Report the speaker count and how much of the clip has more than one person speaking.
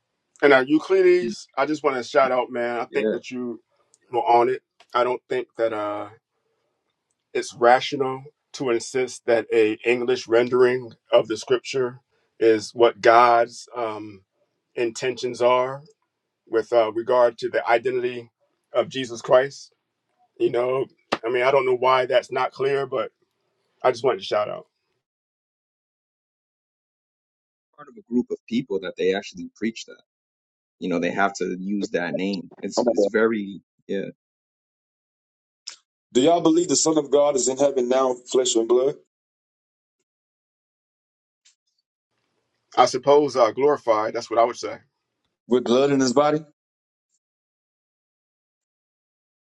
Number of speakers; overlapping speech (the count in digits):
3, about 1%